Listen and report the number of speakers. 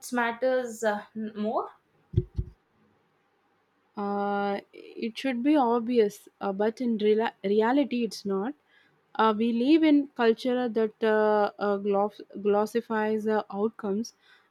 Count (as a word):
two